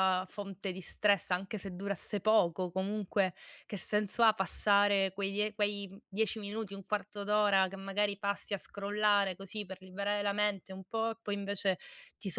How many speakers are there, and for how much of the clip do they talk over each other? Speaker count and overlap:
one, no overlap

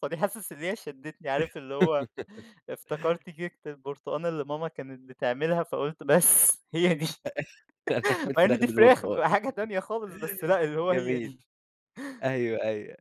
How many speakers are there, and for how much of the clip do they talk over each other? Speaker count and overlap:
two, about 10%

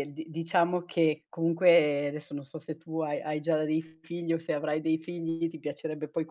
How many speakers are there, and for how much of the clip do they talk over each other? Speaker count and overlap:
one, no overlap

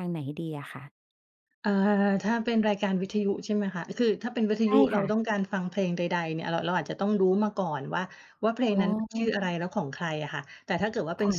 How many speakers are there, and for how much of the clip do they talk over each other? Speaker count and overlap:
two, about 7%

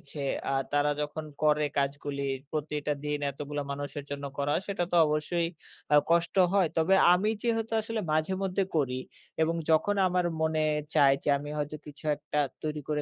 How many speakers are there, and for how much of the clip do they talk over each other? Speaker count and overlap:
one, no overlap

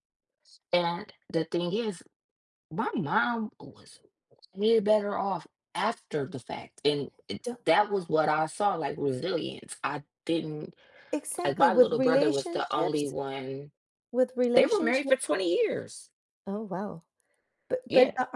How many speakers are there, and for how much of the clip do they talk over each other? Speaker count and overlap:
two, about 14%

